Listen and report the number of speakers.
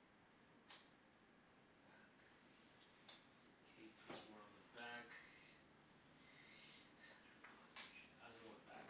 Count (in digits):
1